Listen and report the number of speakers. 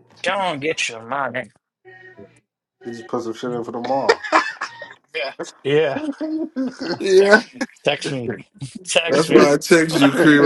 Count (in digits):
3